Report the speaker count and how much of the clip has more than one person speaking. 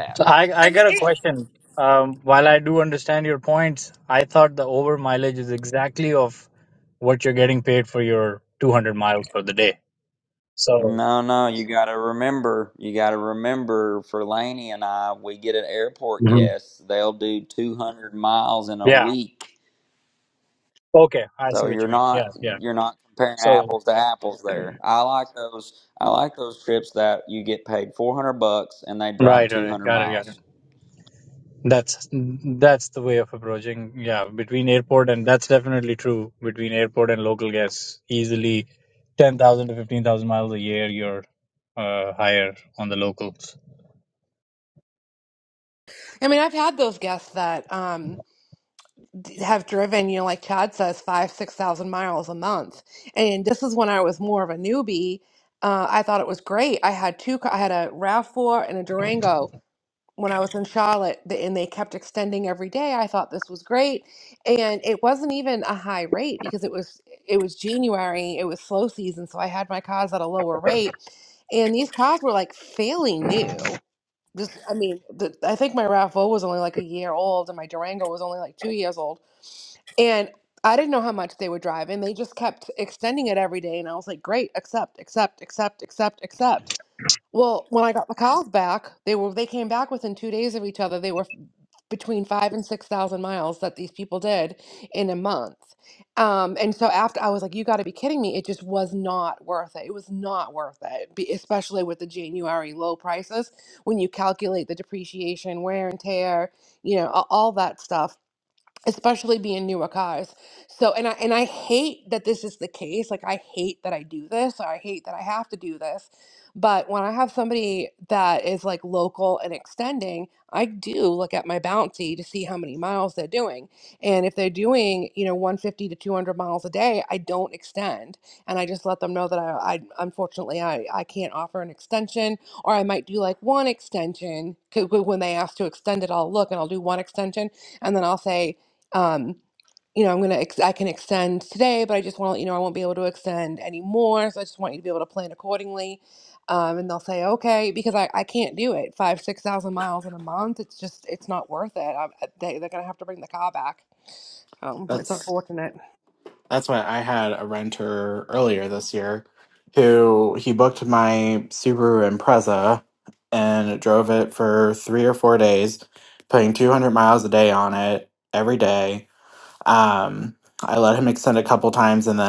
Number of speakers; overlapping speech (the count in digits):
4, about 2%